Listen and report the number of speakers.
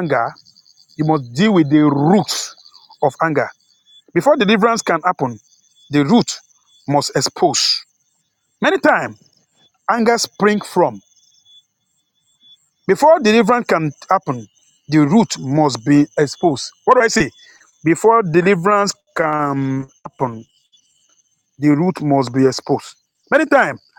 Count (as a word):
one